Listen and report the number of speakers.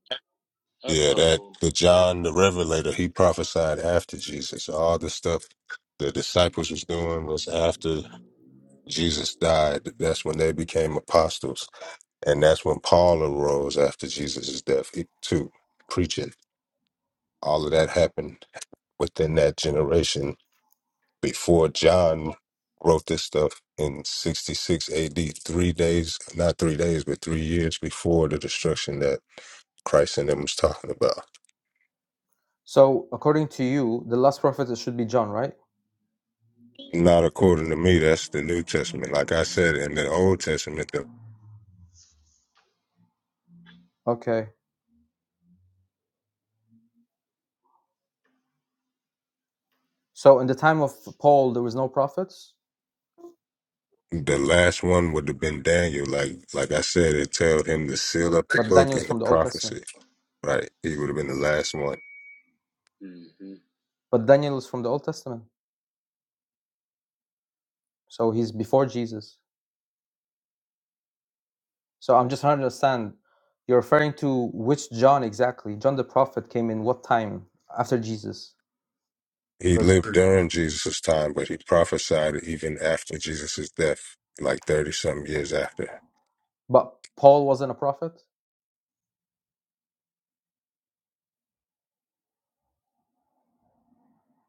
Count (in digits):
3